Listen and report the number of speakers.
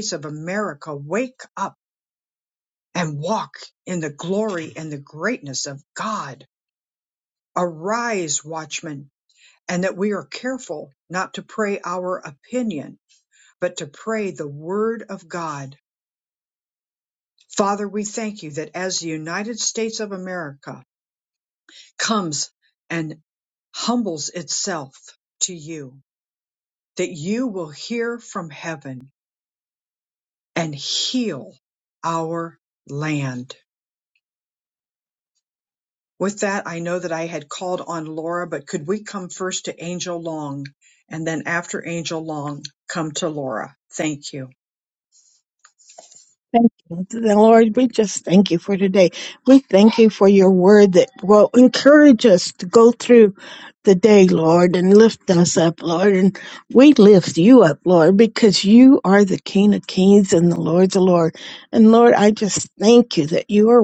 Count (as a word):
two